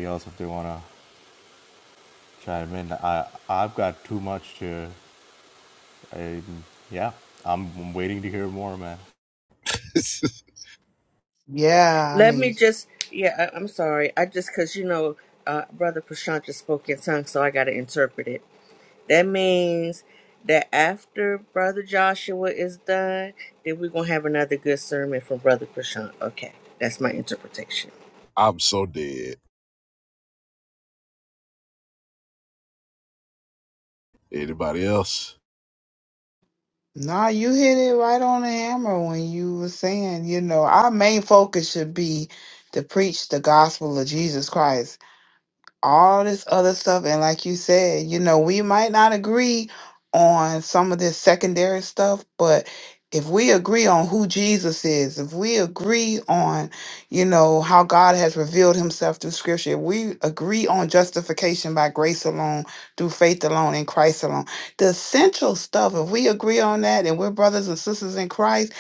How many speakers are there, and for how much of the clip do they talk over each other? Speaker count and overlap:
four, about 1%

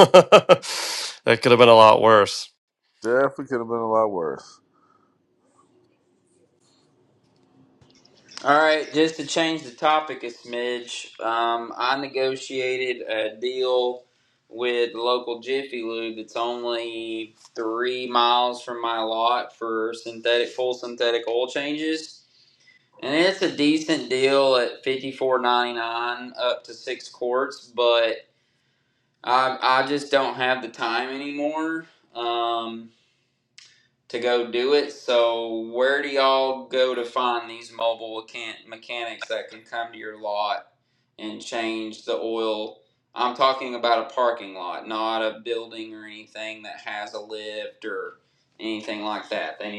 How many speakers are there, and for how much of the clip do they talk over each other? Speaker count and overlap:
three, no overlap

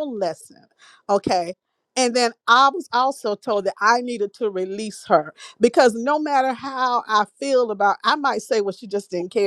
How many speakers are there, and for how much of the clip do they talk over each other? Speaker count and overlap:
one, no overlap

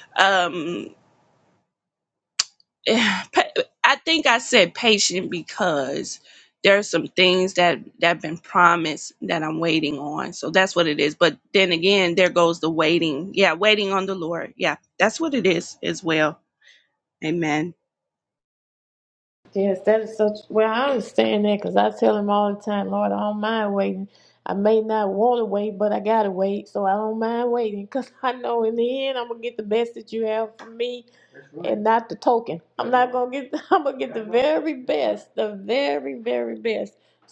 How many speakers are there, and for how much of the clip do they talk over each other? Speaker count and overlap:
two, no overlap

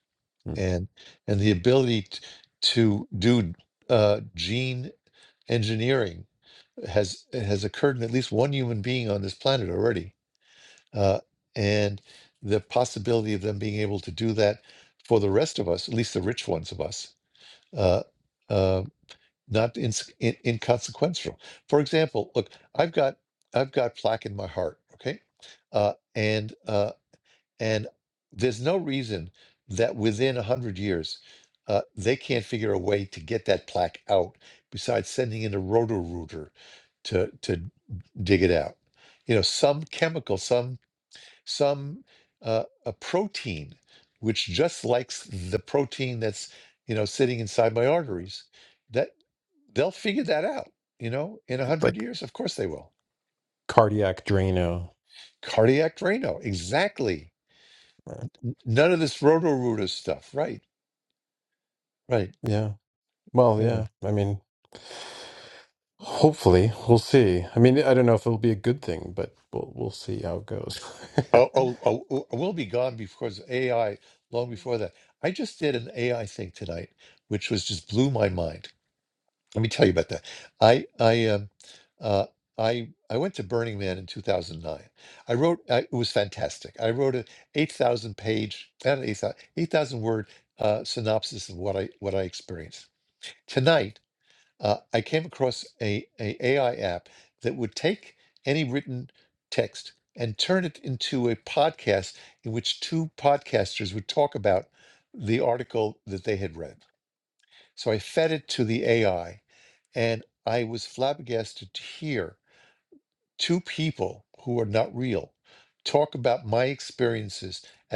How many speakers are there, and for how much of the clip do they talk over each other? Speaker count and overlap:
two, about 1%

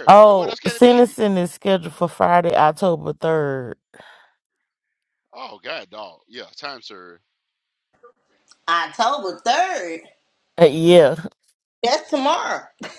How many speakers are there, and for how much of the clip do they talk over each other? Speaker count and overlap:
three, about 8%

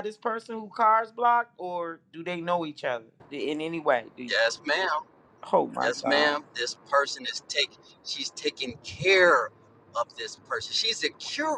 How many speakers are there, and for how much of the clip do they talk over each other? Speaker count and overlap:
two, about 5%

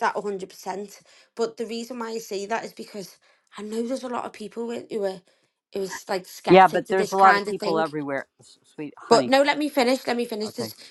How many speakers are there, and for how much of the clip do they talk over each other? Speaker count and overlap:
two, about 17%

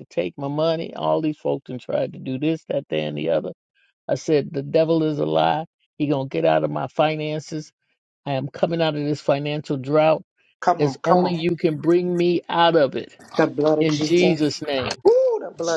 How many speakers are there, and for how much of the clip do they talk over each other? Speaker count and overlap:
two, about 9%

